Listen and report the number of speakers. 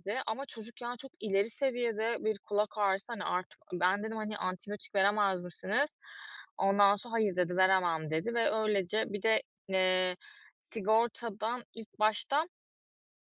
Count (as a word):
one